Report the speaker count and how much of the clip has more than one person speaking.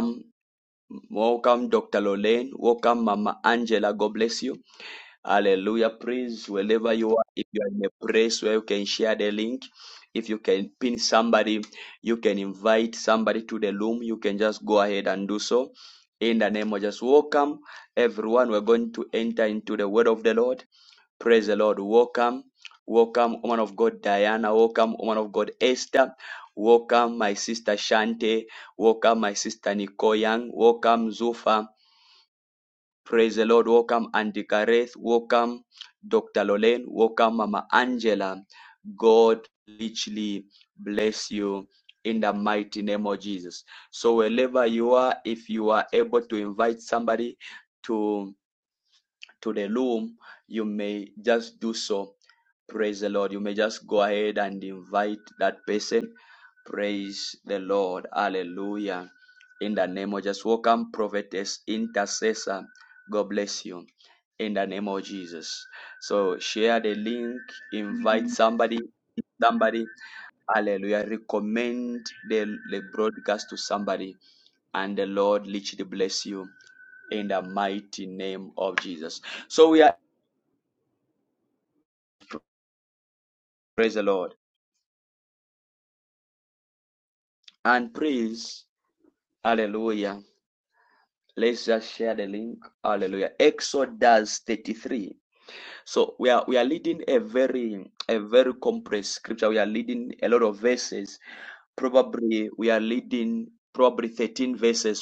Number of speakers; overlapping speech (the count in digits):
1, no overlap